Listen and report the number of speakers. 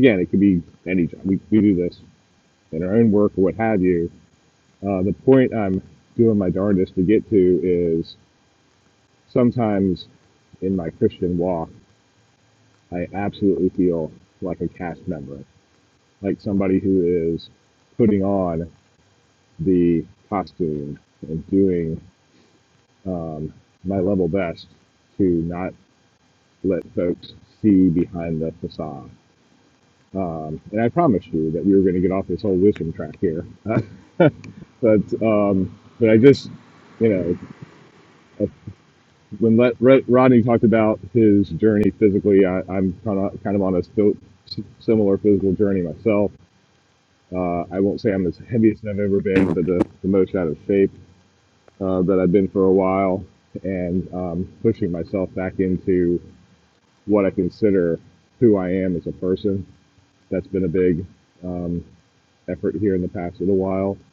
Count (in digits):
1